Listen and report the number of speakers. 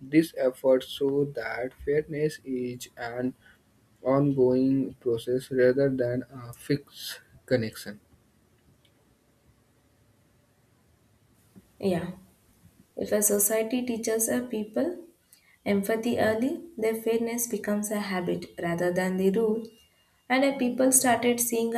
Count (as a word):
two